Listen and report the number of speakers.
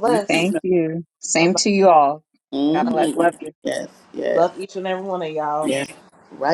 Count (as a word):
three